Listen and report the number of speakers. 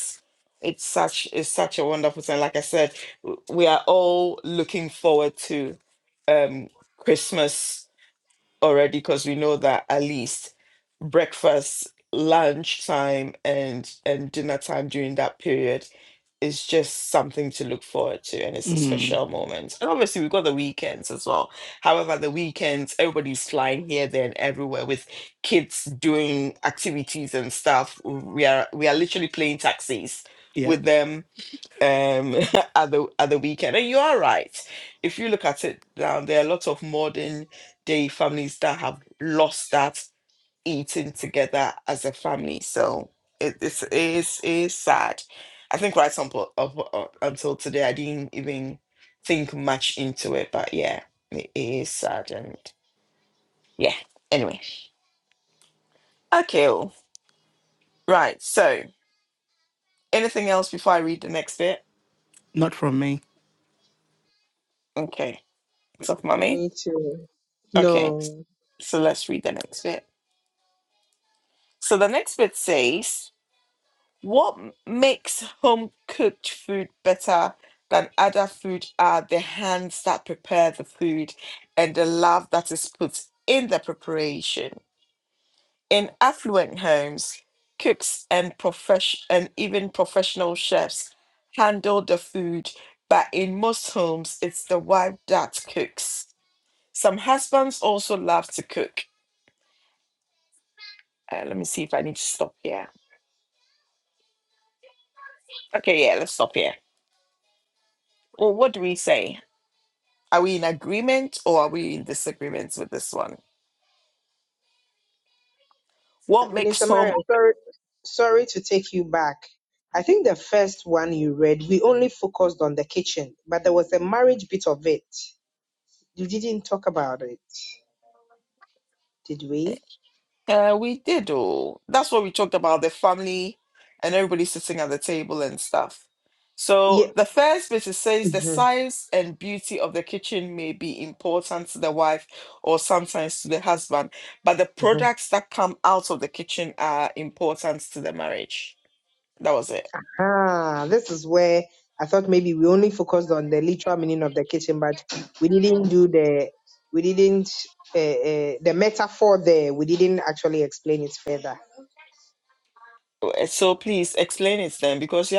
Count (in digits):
3